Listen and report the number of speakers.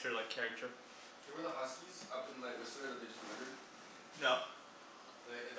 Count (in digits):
2